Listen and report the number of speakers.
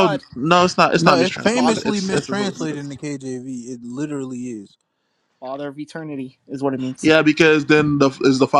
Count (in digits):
3